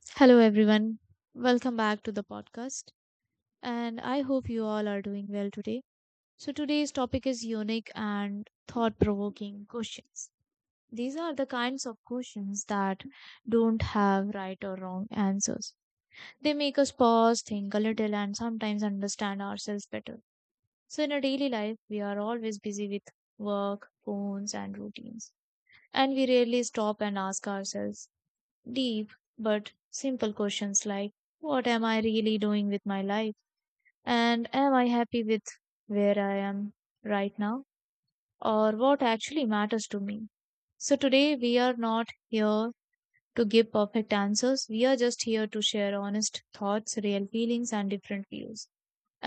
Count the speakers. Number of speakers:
one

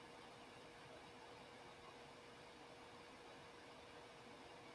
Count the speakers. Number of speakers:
zero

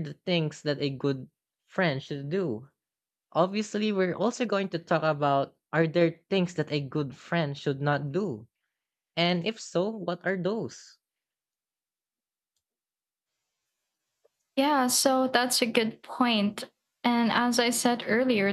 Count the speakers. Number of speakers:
two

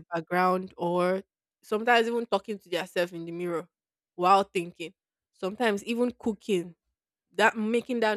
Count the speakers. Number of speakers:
one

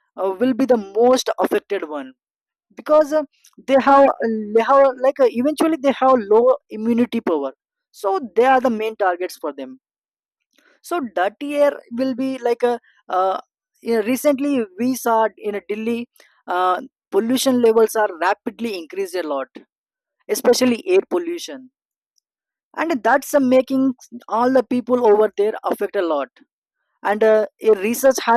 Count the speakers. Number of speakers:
one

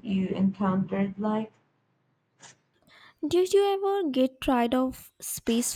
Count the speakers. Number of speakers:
two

